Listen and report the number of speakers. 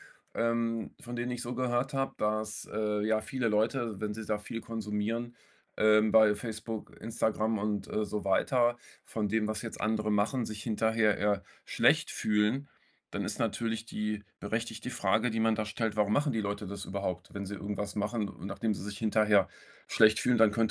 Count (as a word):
one